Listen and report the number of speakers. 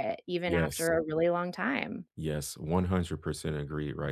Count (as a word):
two